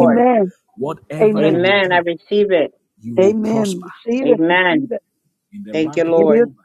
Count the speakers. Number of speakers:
3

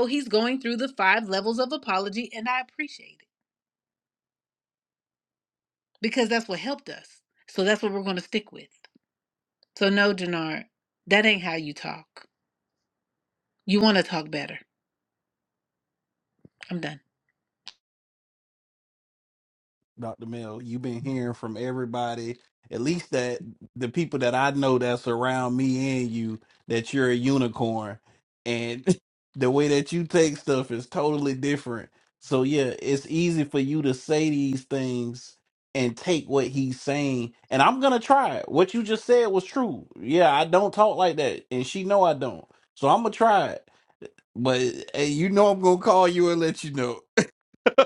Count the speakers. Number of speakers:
2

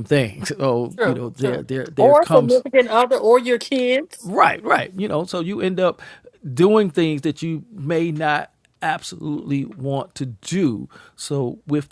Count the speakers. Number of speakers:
2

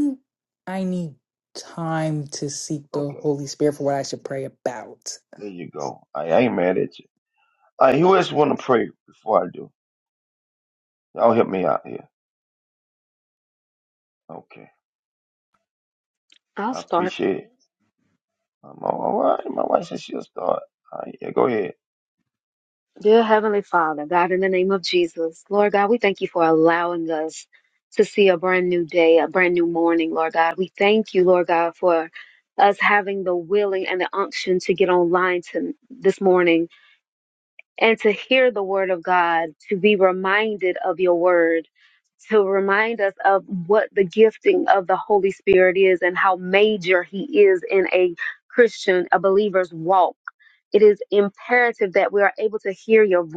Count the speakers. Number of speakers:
3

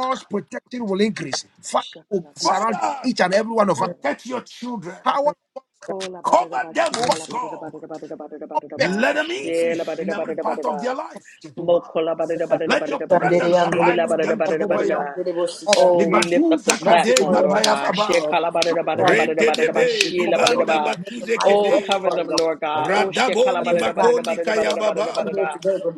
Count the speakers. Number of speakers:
4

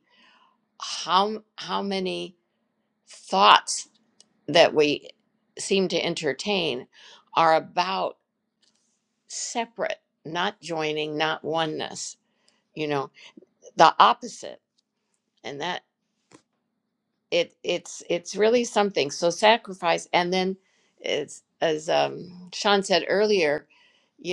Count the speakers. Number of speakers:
1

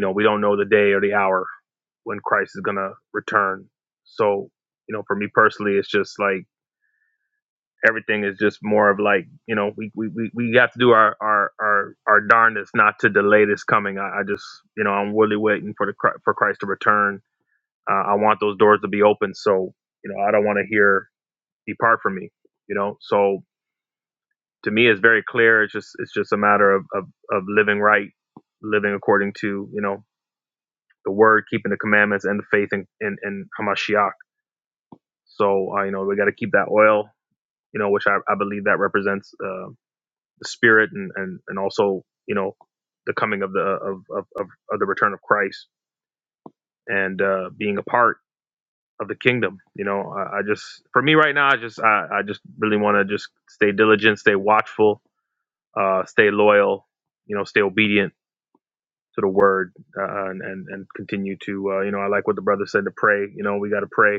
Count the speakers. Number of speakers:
1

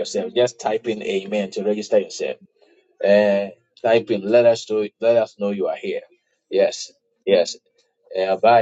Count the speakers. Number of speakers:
1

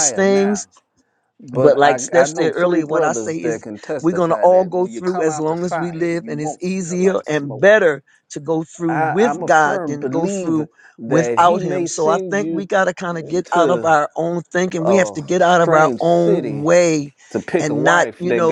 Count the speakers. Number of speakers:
2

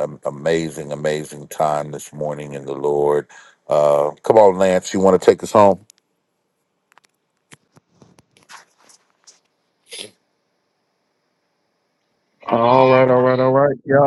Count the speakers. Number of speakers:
2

